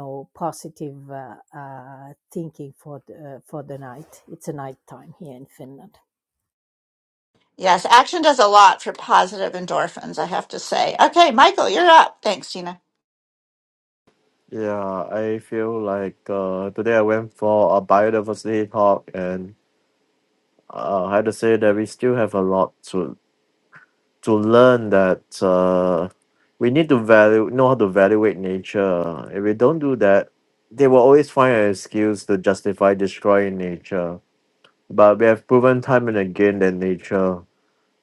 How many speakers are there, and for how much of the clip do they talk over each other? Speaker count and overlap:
3, no overlap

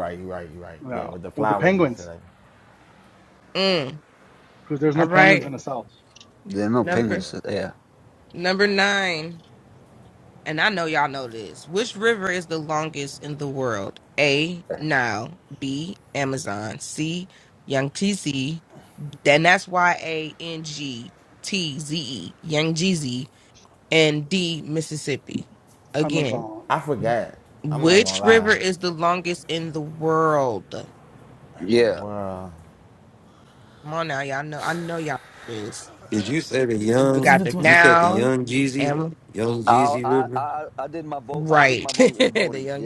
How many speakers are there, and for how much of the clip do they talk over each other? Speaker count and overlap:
5, about 17%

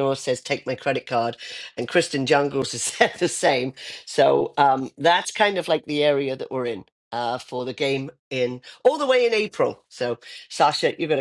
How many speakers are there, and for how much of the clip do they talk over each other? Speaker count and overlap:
1, no overlap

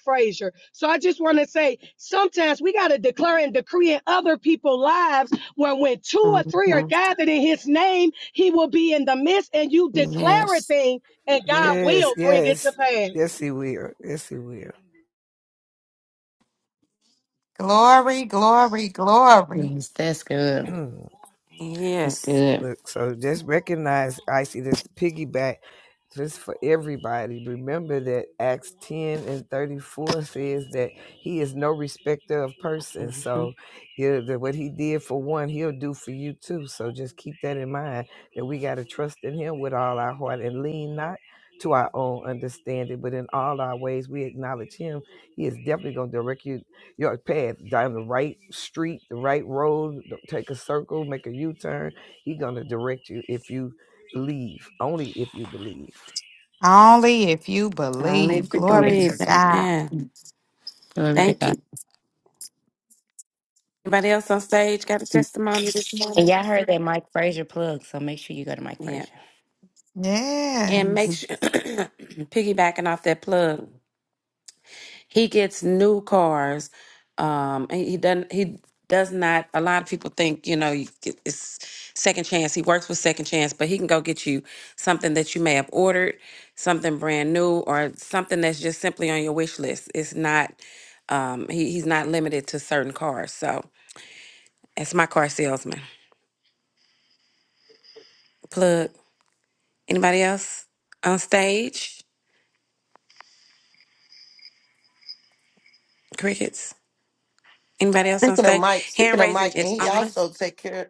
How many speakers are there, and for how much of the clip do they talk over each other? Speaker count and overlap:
6, about 7%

